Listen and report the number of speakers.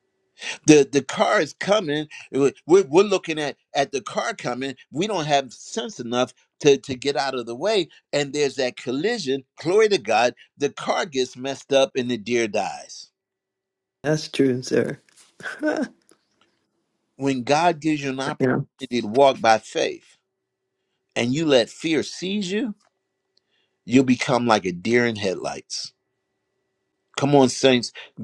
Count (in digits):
2